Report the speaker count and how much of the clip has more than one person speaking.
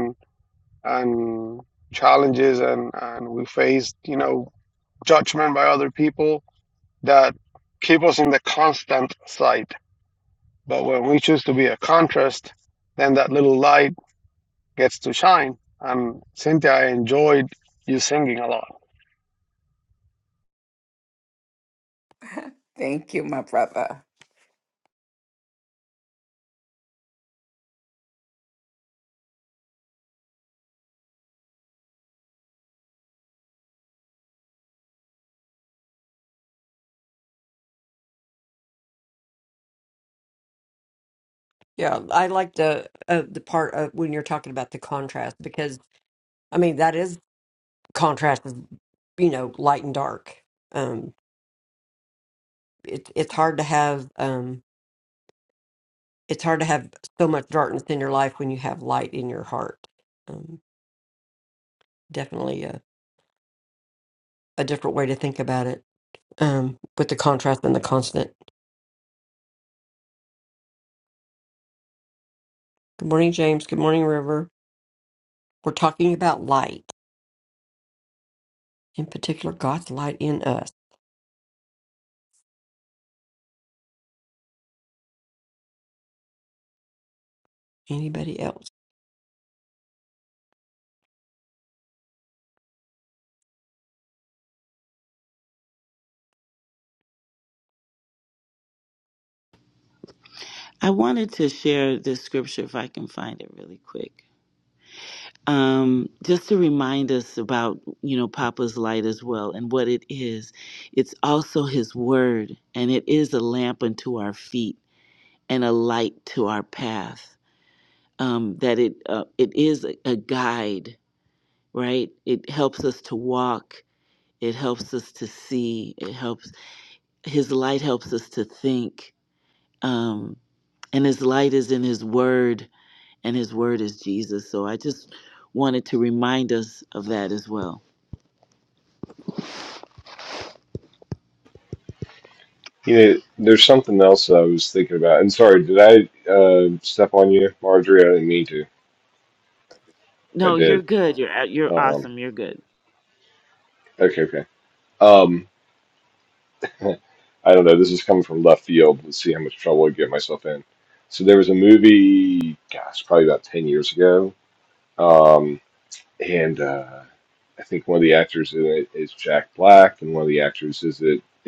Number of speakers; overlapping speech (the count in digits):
5, under 1%